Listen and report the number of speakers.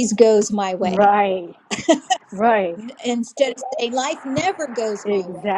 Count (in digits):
2